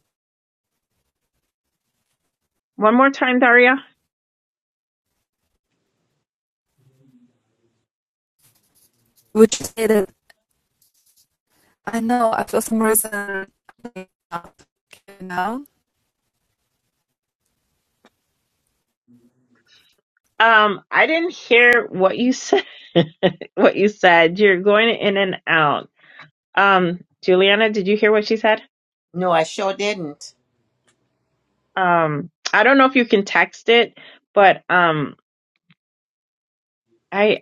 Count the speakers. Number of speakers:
3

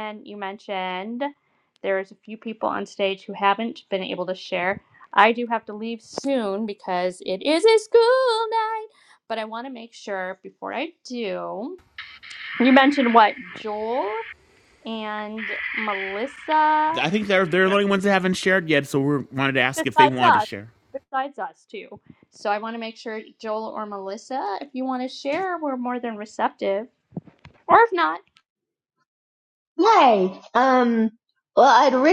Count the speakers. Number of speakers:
3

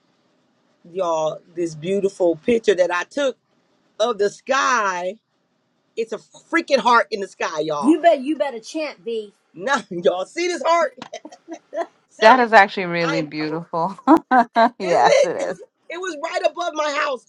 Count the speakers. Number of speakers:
3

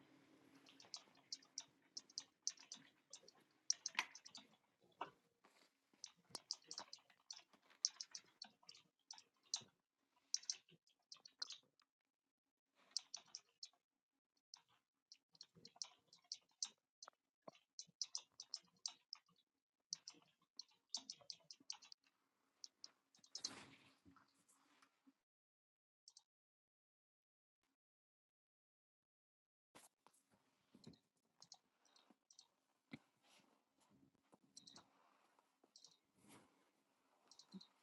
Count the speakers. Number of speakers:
0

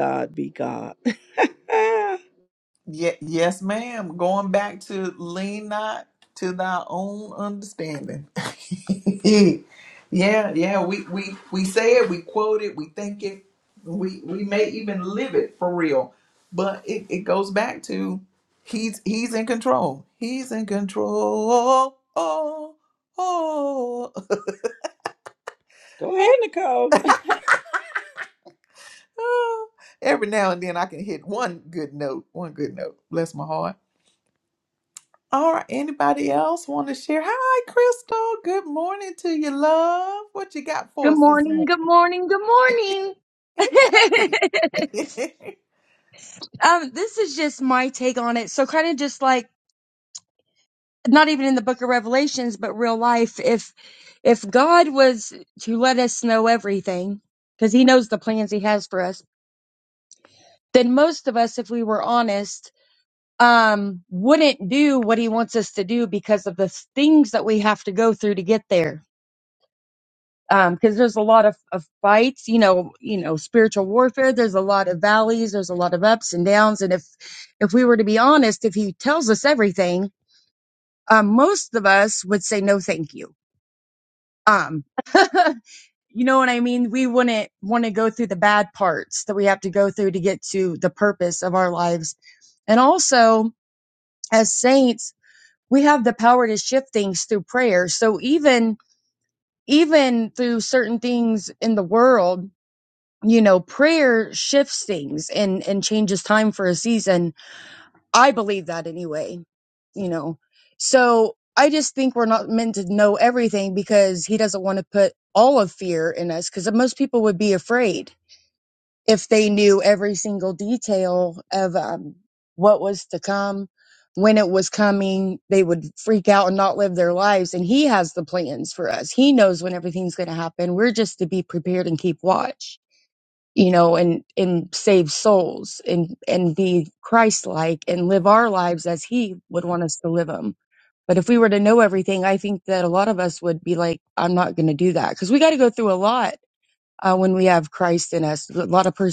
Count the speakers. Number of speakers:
3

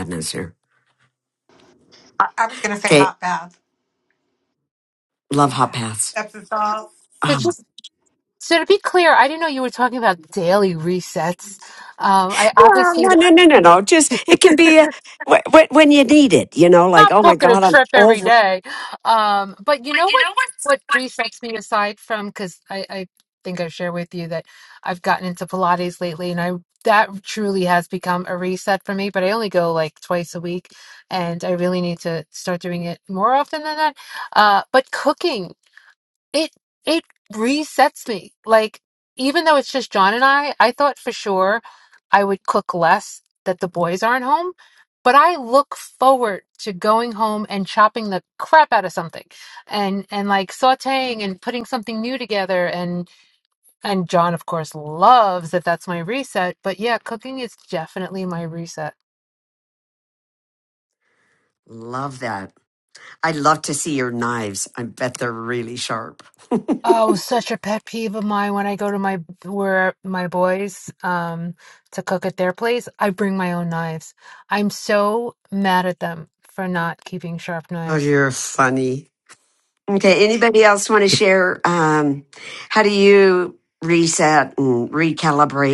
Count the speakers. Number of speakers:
3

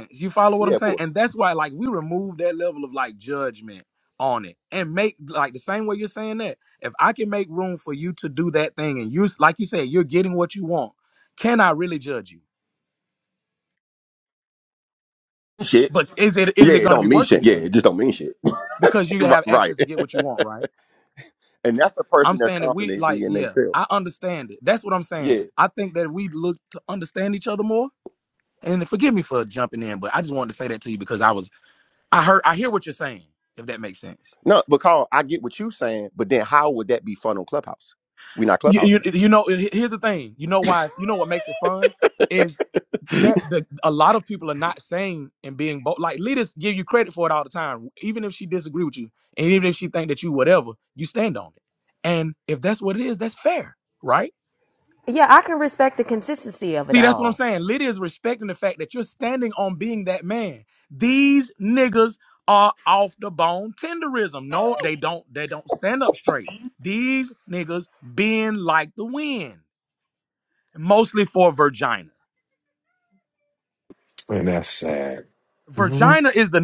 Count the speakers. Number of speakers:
4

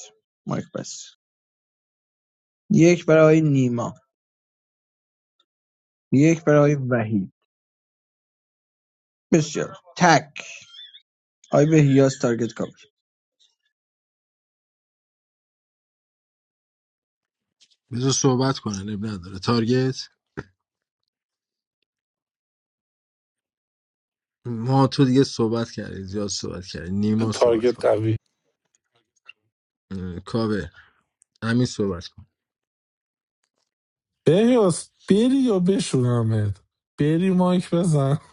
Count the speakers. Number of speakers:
3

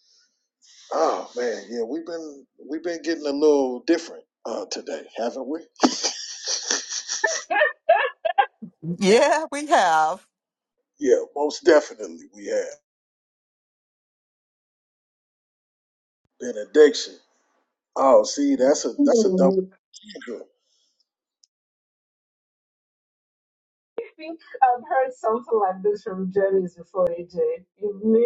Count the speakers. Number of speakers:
3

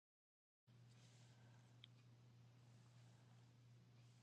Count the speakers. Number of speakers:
0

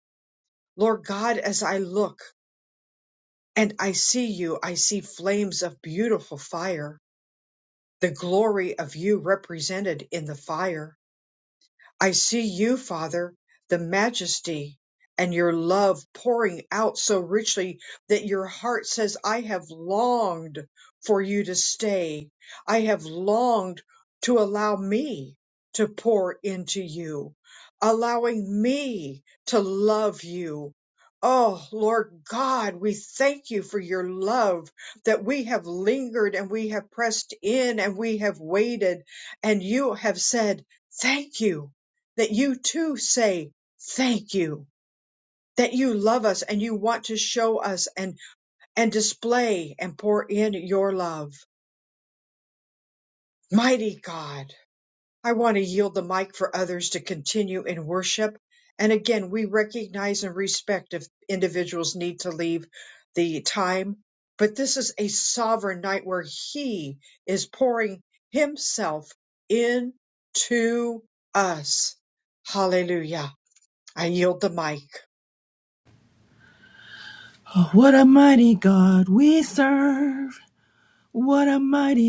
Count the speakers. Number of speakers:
2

